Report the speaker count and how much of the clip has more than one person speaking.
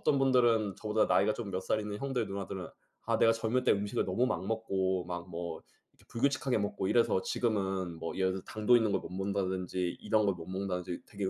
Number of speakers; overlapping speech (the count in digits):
1, no overlap